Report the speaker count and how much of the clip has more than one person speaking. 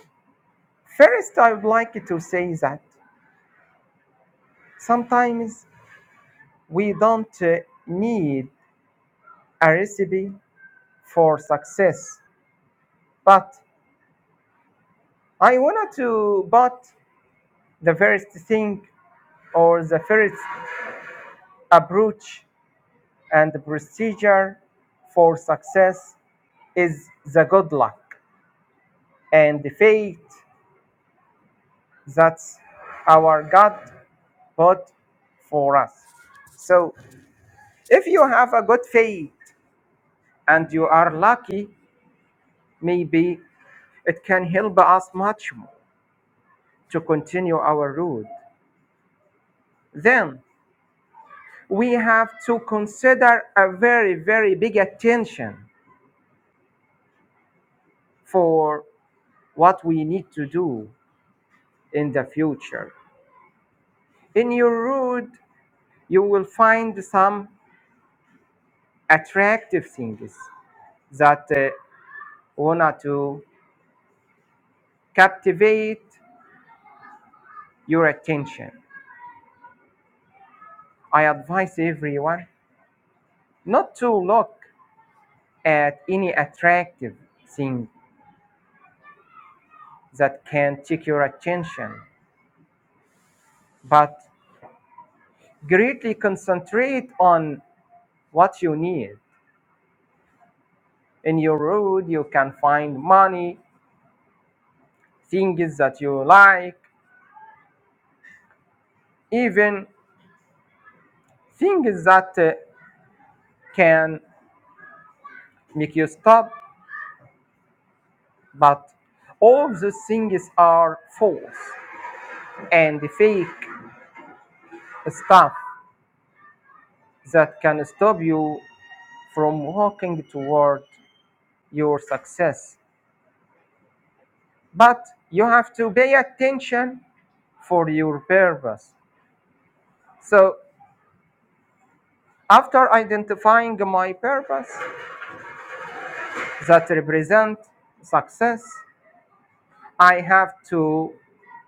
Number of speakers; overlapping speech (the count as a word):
one, no overlap